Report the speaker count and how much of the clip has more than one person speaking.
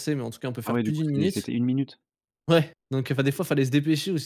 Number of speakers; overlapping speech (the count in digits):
2, about 19%